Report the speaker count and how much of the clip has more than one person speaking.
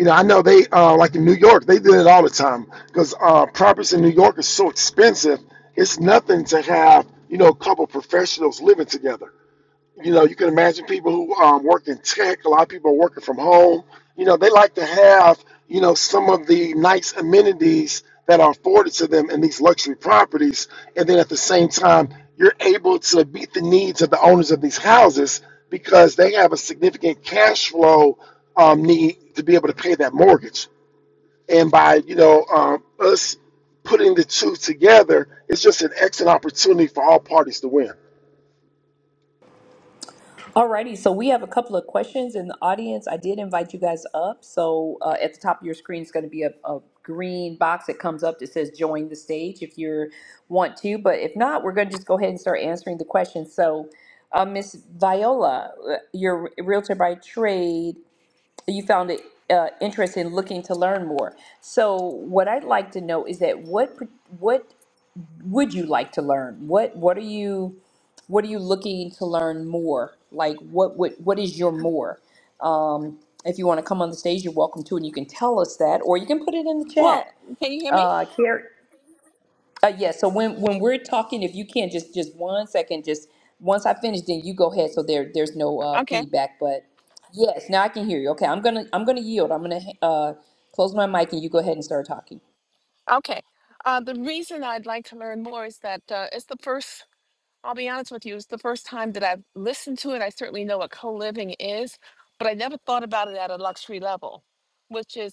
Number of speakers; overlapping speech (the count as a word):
three, about 1%